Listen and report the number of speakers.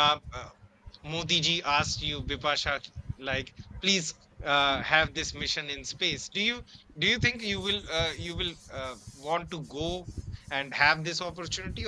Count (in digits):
1